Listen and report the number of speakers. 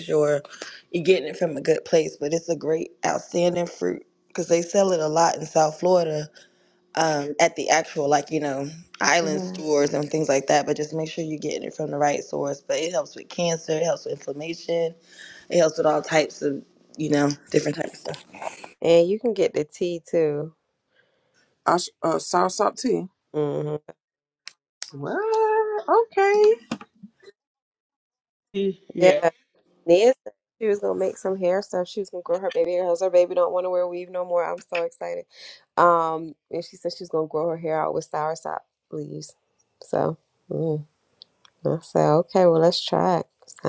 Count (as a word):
three